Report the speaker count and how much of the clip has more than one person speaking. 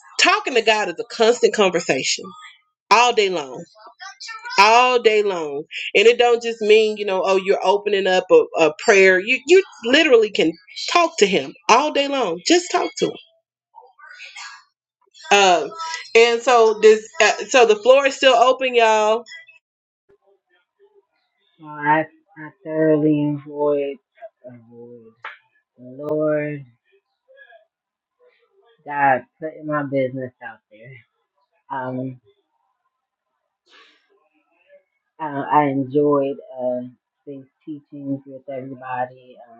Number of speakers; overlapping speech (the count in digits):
2, no overlap